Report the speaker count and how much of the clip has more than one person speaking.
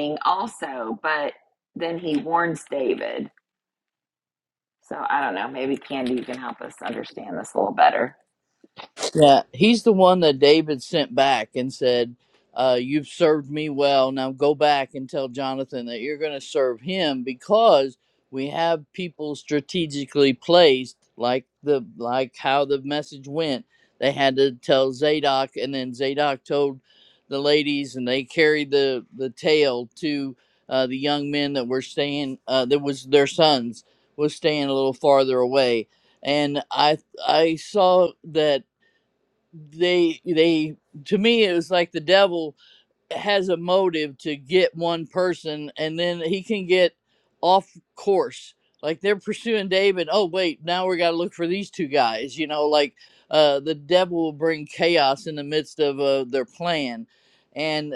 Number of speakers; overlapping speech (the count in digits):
2, no overlap